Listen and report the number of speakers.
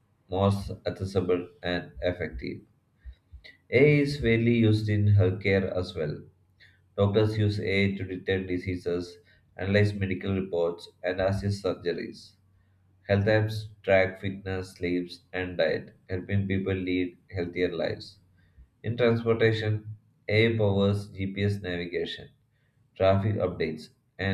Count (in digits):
1